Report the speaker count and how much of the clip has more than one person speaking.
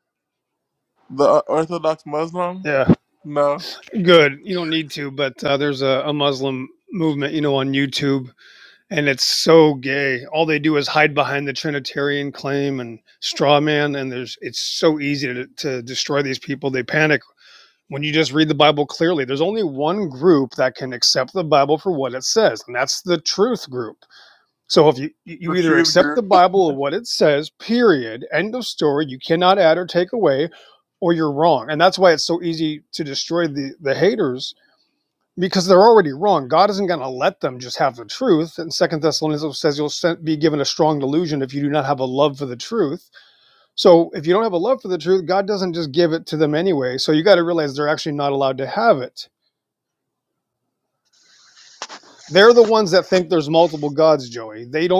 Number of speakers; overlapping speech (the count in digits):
2, about 1%